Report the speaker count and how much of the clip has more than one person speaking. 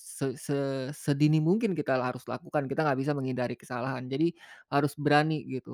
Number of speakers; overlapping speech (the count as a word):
one, no overlap